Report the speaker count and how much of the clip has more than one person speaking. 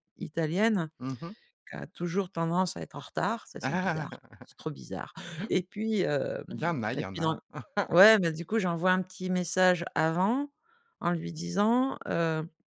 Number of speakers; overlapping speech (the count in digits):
2, about 3%